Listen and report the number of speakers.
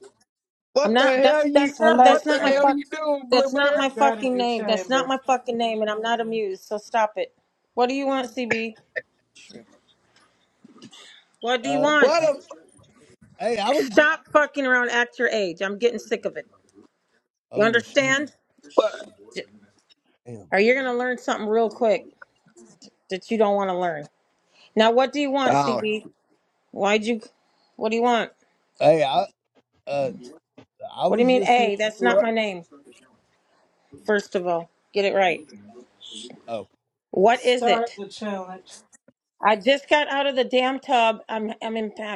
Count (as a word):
four